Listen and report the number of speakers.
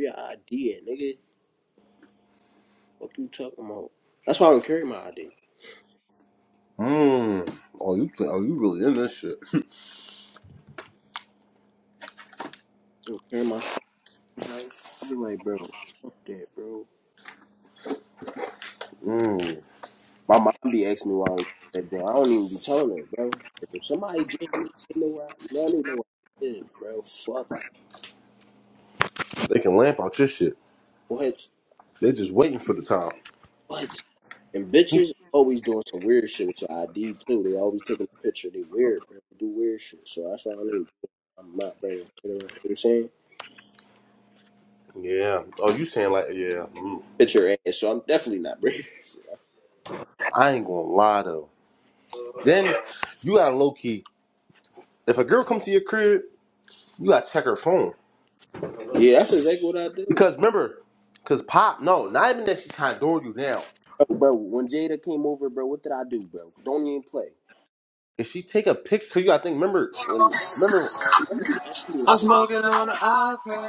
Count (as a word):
three